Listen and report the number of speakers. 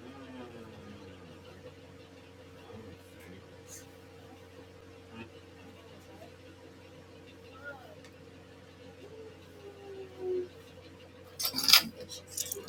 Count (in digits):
0